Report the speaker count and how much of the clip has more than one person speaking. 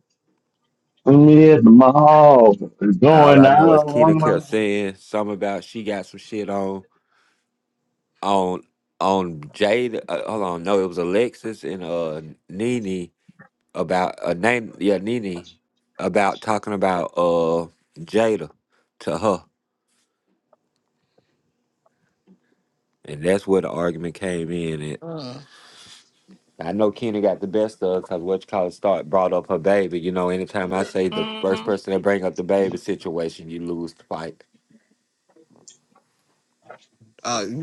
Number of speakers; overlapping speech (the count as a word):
three, about 5%